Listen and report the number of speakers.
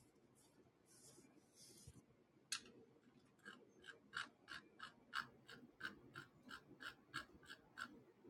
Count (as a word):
zero